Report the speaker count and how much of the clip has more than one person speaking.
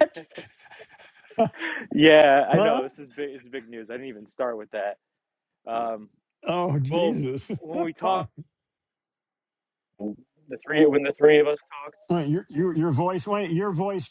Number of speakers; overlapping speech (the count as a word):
two, about 7%